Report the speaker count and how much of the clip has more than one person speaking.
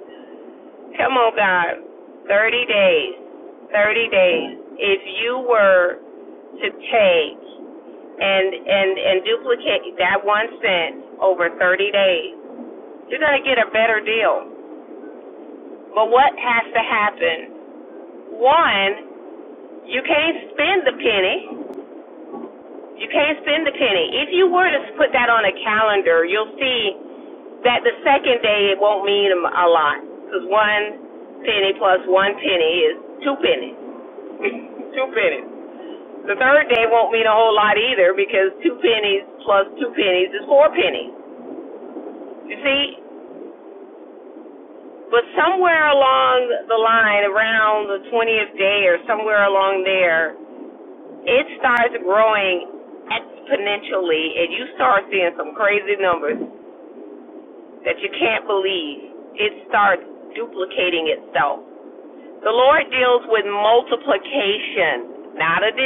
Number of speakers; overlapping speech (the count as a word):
one, no overlap